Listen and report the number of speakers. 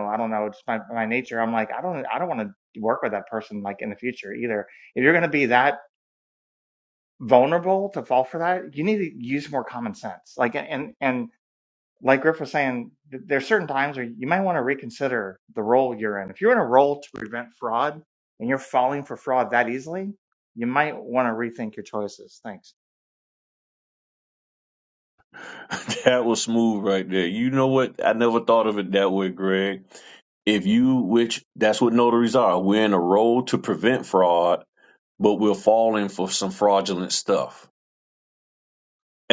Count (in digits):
2